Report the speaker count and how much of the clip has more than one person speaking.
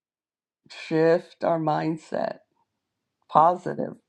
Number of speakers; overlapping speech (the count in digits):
1, no overlap